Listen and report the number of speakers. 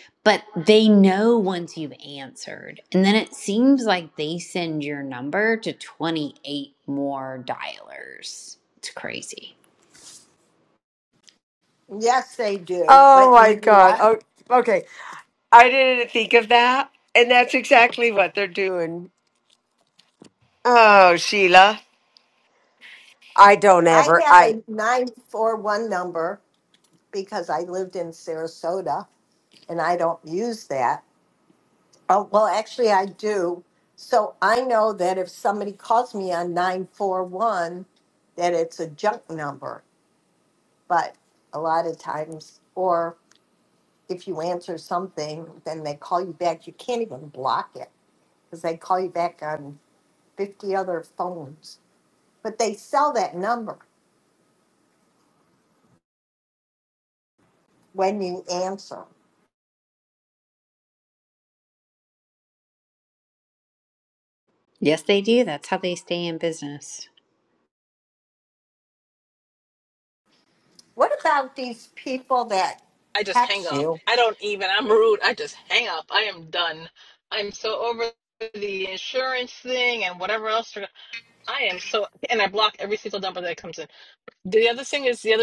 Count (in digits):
4